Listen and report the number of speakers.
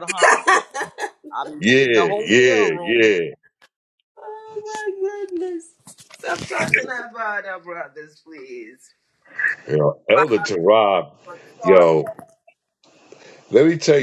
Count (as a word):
three